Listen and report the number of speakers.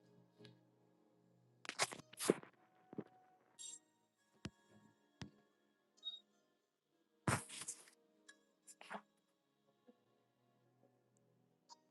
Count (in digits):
0